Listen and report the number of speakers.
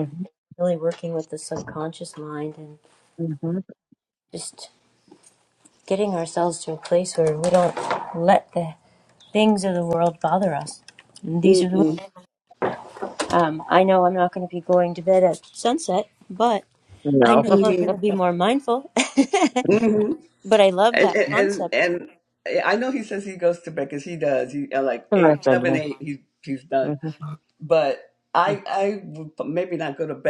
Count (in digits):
3